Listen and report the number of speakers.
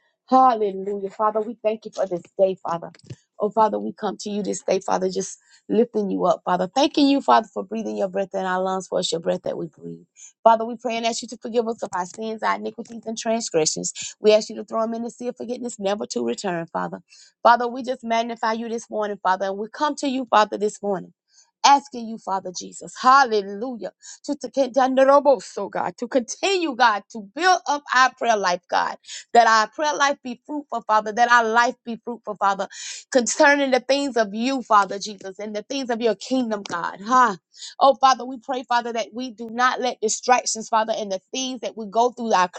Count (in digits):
1